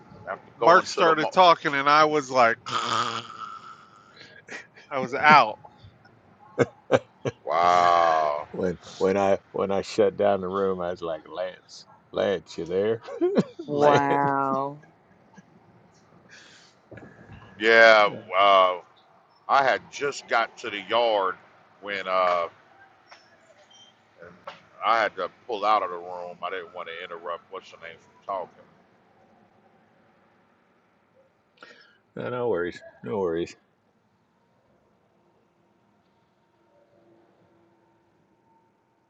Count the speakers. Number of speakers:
4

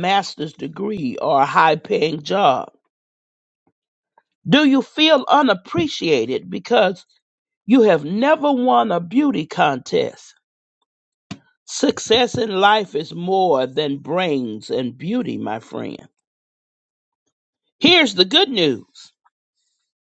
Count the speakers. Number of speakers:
1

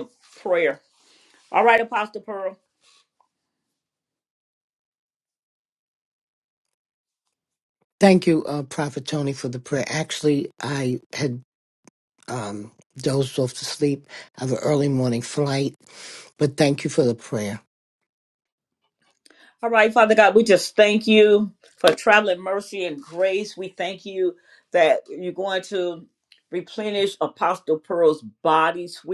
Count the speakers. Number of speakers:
2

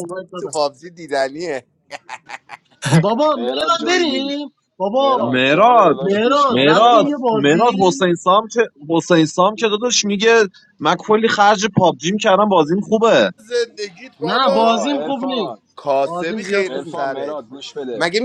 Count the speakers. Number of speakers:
4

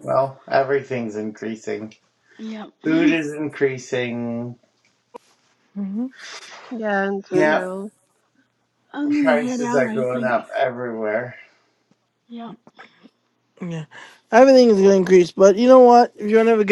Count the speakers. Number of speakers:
4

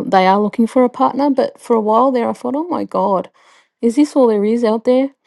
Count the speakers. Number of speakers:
1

